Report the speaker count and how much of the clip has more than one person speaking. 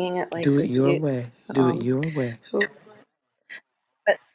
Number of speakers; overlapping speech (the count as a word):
two, about 20%